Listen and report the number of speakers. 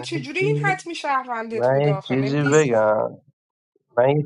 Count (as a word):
two